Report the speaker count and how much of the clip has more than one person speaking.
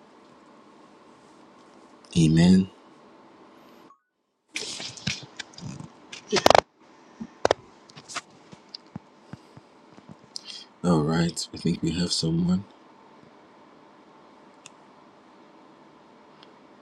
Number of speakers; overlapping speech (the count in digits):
1, no overlap